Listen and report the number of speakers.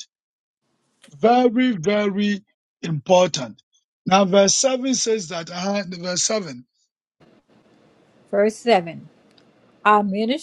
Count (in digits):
2